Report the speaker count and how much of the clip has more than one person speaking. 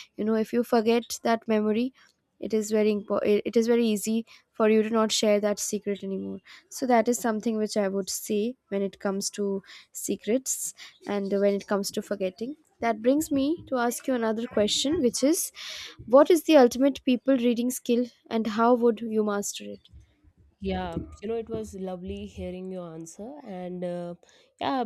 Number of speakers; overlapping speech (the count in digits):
2, no overlap